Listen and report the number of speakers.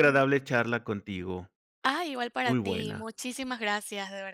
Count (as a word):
two